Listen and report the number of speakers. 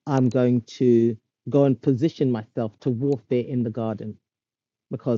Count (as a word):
one